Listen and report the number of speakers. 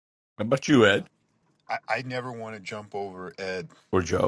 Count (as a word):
two